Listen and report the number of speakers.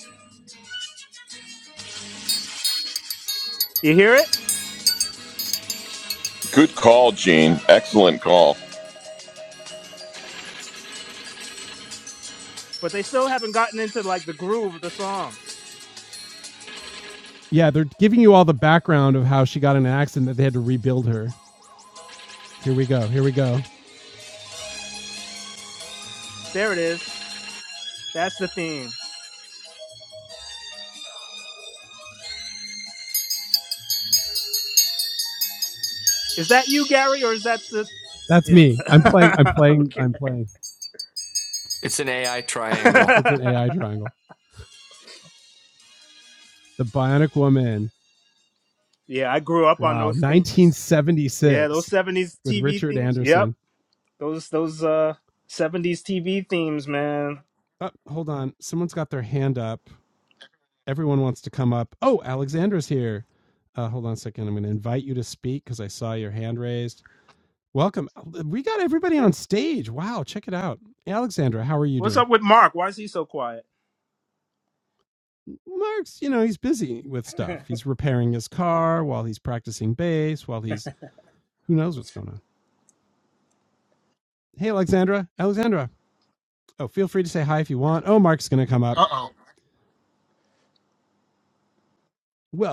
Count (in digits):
4